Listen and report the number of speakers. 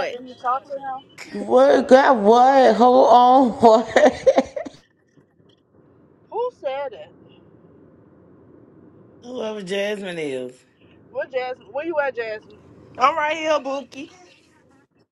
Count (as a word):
four